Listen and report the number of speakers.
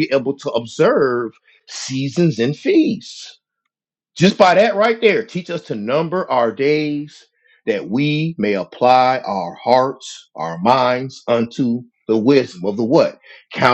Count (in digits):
1